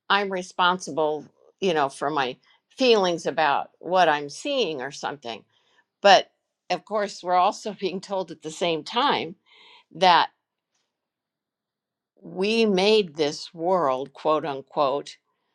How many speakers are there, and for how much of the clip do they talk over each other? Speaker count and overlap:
1, no overlap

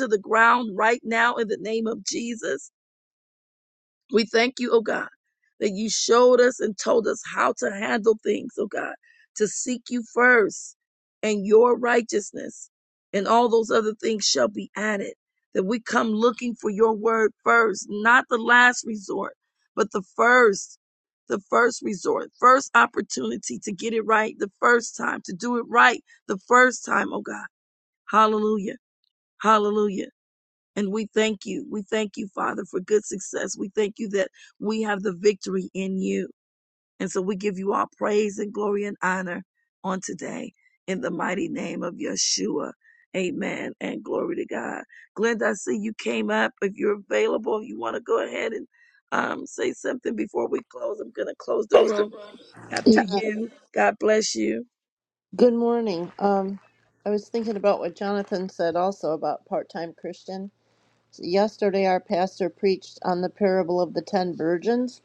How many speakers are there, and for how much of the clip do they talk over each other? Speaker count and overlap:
2, under 1%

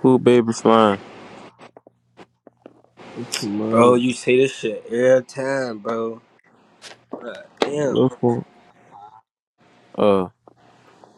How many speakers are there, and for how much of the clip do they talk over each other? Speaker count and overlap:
3, about 5%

